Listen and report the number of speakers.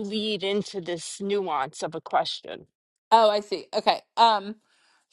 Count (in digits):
2